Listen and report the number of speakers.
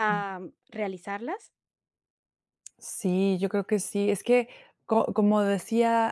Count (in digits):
2